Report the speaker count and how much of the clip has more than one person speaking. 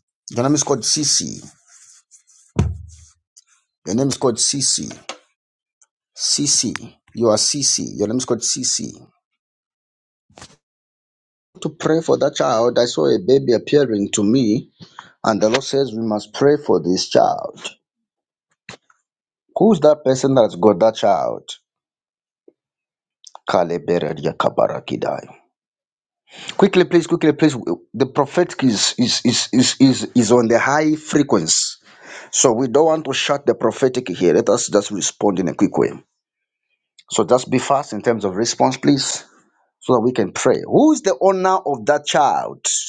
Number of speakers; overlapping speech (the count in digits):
1, no overlap